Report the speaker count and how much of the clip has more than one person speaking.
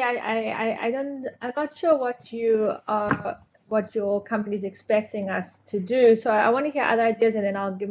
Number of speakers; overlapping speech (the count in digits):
1, no overlap